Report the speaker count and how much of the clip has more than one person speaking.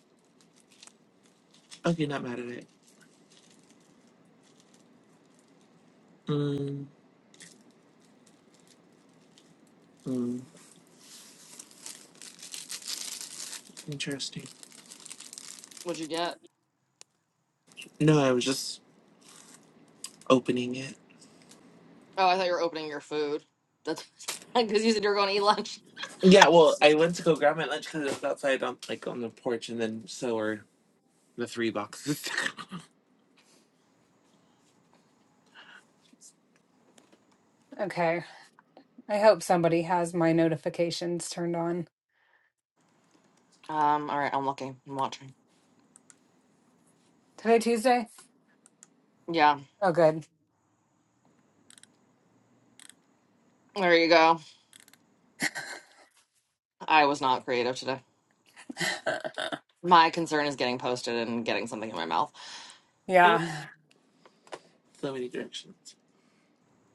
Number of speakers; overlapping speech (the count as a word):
three, under 1%